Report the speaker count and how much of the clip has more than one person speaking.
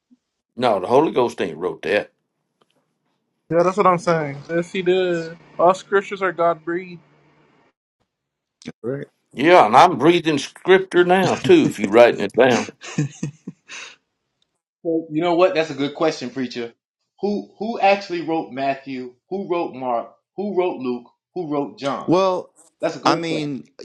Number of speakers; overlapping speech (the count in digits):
4, about 1%